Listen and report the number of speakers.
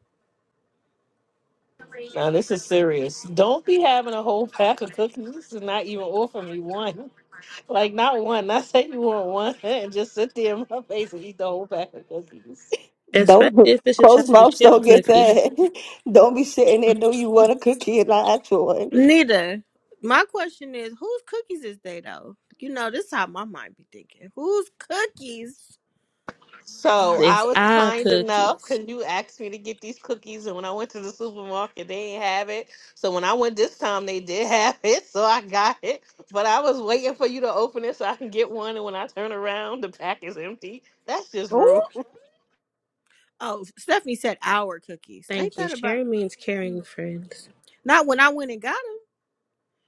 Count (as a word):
four